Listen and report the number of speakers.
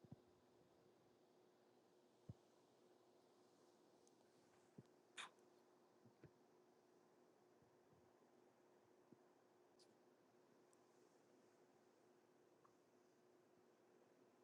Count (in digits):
0